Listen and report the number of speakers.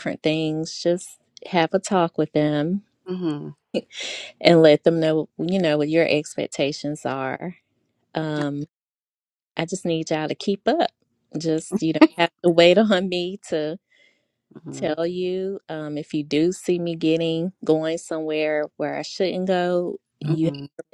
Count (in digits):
2